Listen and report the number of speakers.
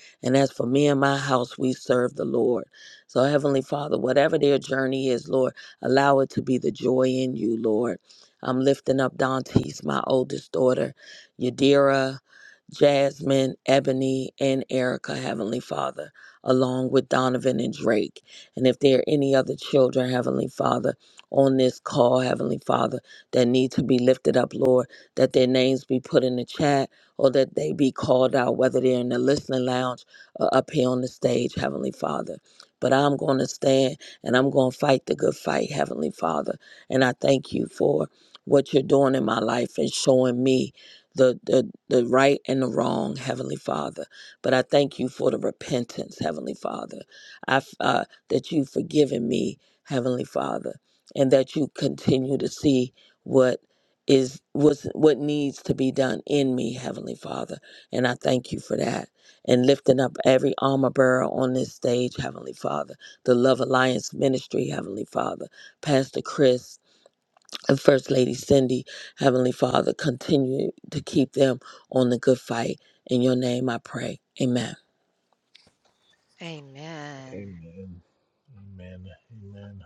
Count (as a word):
three